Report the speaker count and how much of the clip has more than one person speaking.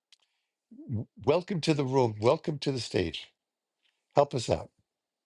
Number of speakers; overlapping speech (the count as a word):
one, no overlap